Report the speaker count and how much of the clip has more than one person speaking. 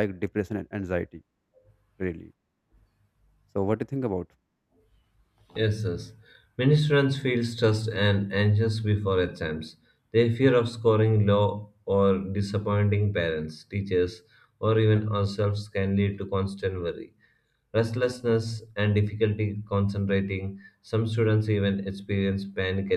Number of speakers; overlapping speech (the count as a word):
two, no overlap